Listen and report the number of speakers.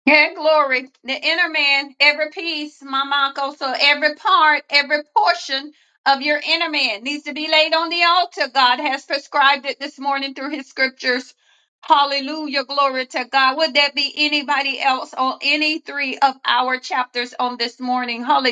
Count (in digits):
1